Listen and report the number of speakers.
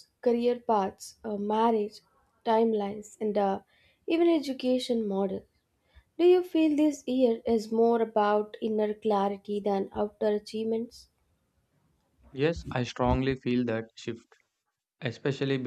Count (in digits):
2